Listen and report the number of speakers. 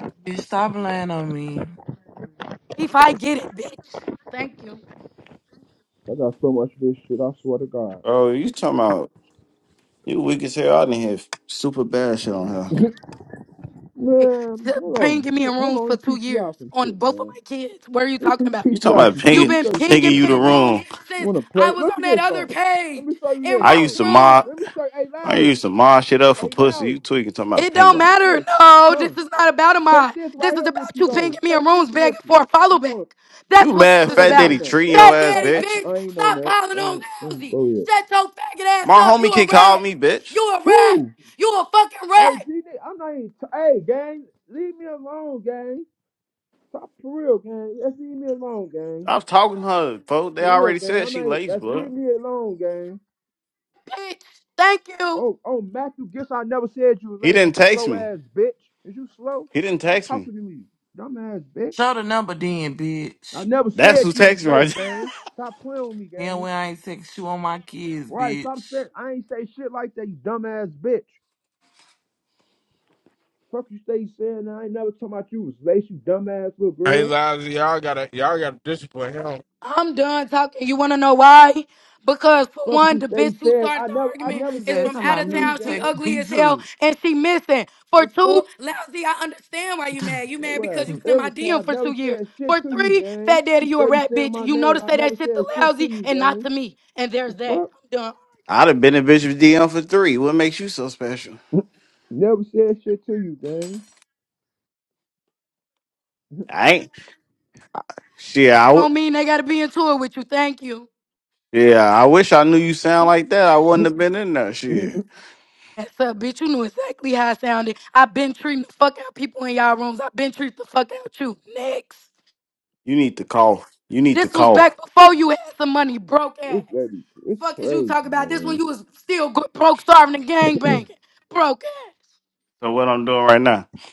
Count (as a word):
five